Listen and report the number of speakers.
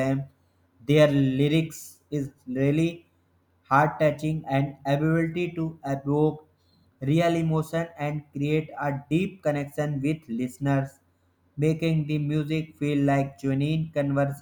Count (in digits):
1